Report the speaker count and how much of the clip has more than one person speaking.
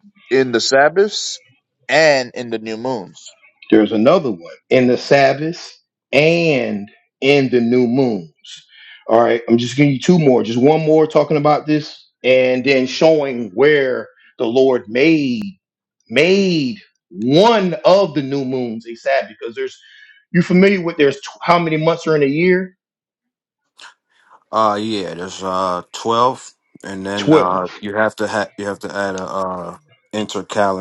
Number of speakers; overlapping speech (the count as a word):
three, about 2%